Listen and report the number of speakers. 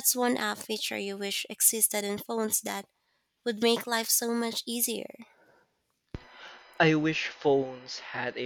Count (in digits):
2